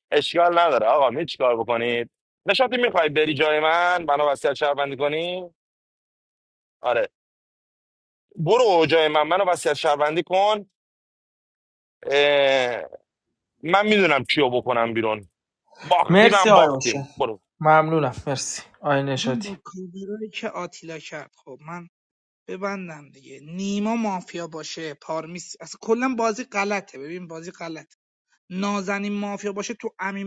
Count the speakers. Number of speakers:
3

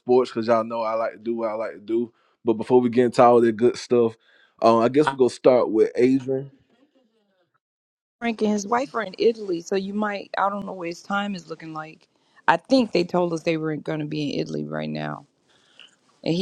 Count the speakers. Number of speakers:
2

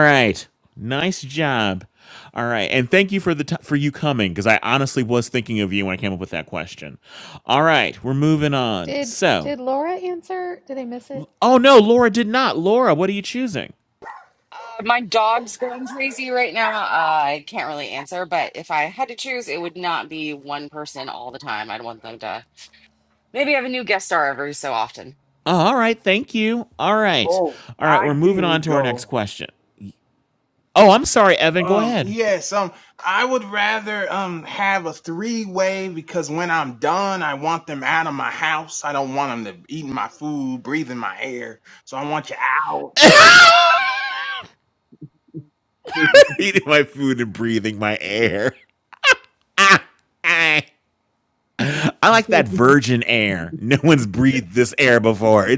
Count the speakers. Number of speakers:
4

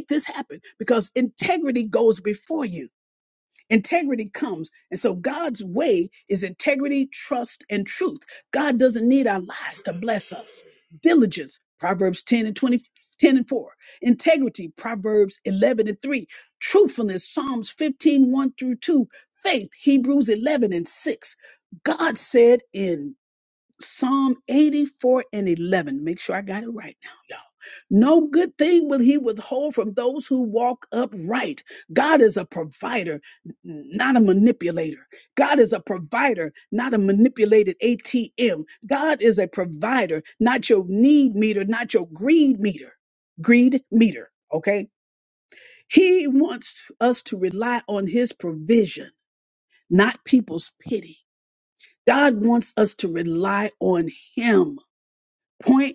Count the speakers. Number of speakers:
1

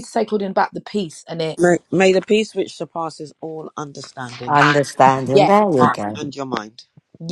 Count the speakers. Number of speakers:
3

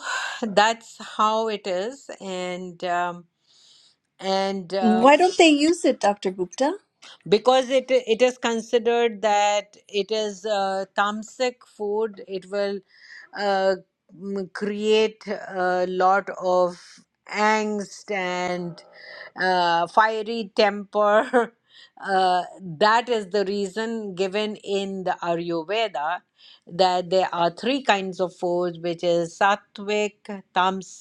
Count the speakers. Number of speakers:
2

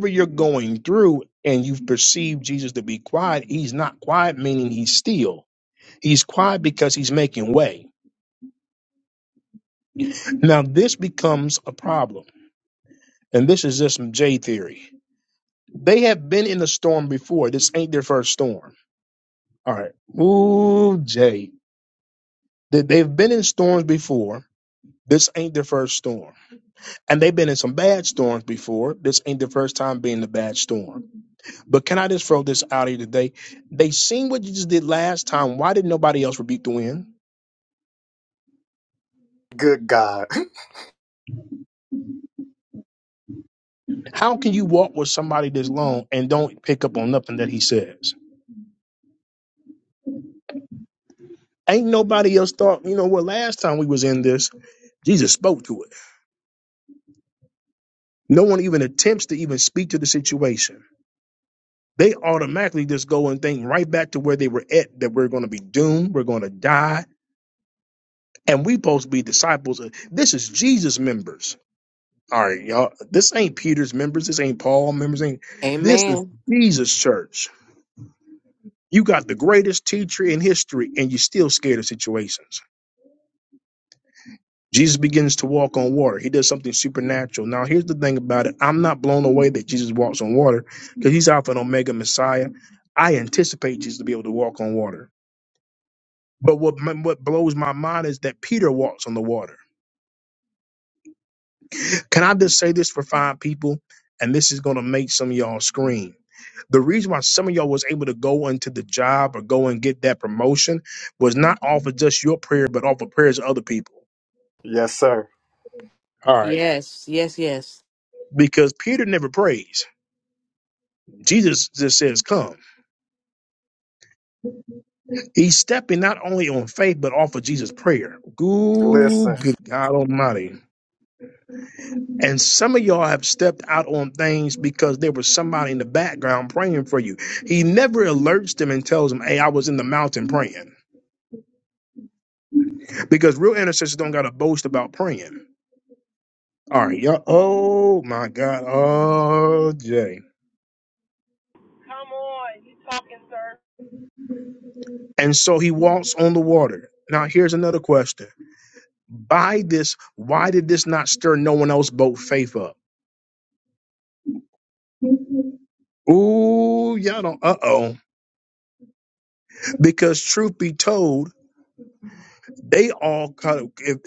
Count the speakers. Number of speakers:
4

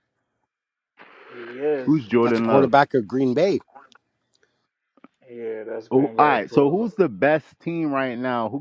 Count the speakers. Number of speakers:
3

